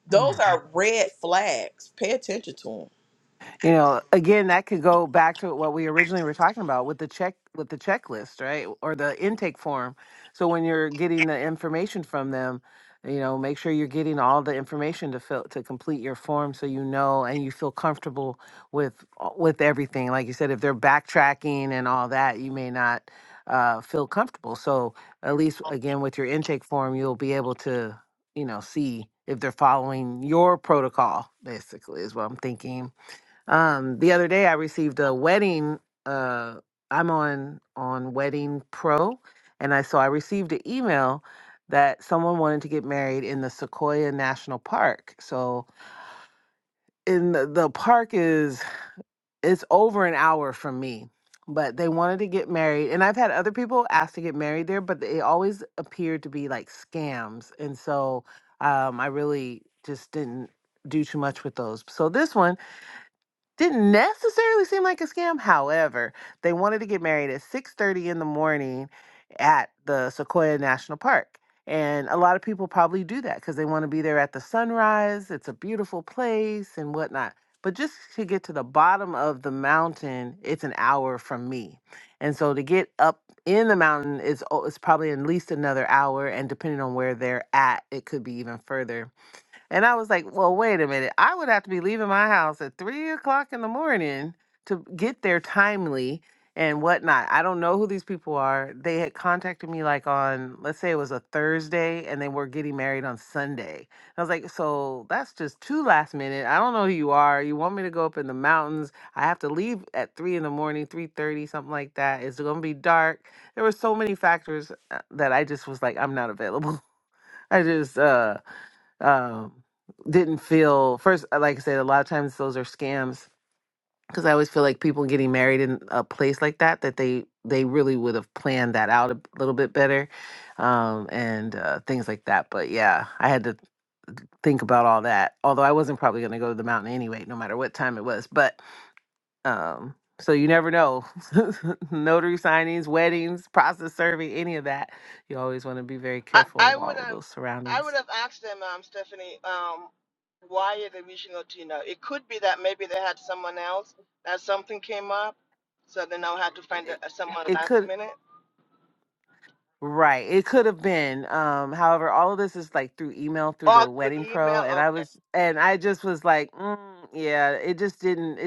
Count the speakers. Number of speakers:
3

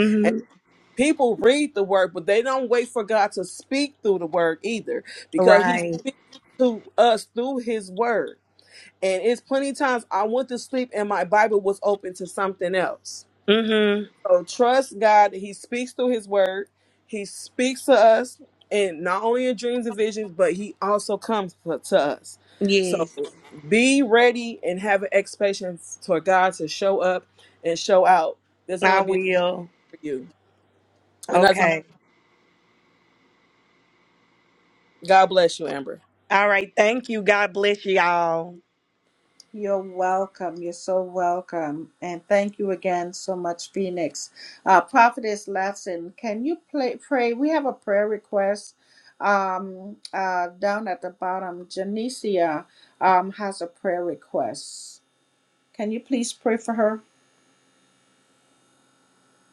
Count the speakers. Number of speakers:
3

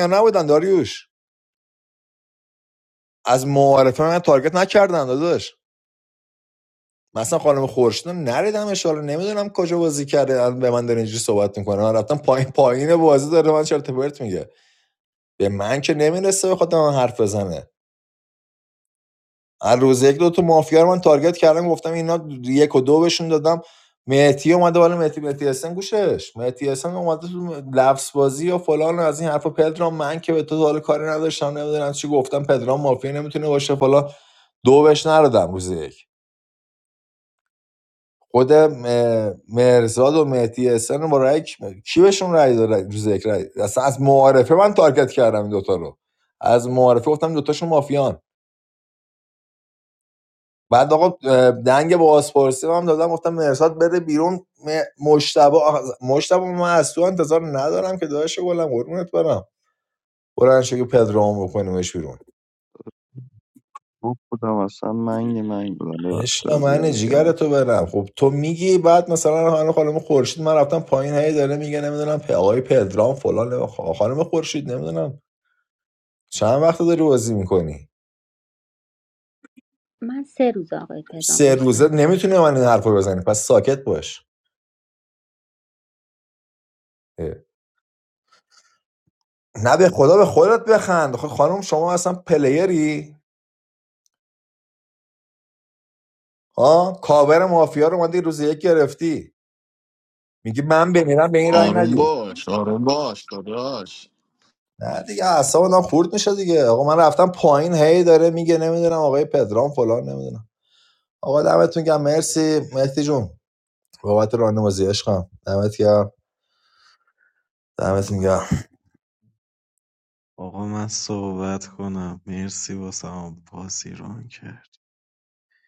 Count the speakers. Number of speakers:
5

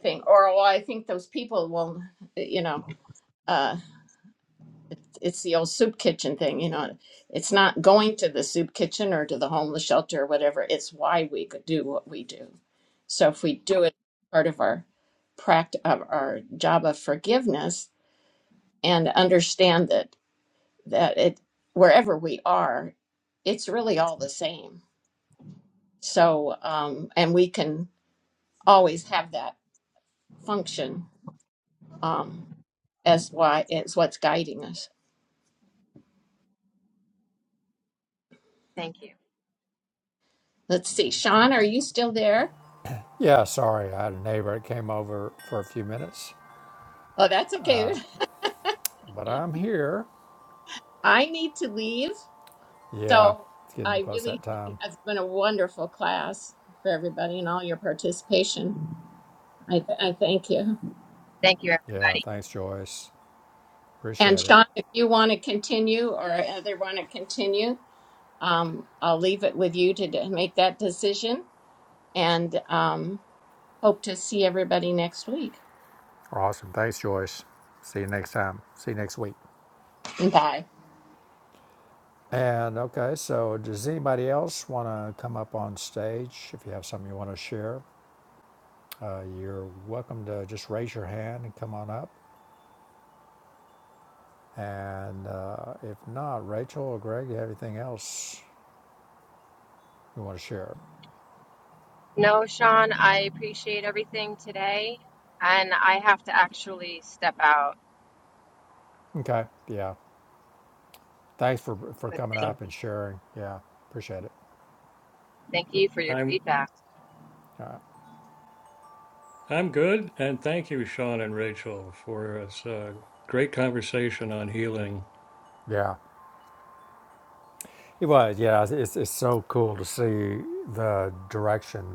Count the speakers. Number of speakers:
4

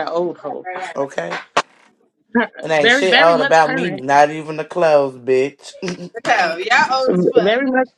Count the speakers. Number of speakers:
3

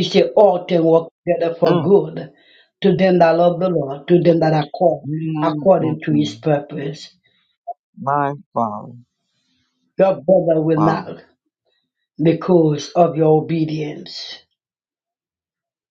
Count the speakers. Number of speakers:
2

